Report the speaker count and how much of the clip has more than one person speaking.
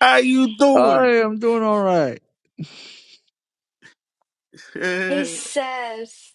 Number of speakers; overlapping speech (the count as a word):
three, about 10%